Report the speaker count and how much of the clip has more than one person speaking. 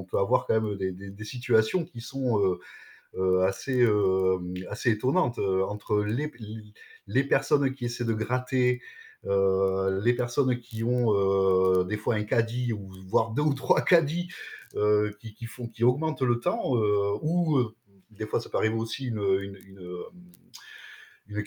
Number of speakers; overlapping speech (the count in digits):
1, no overlap